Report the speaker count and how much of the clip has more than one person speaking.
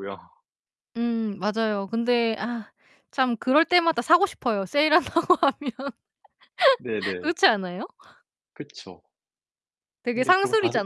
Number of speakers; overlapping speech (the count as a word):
two, about 7%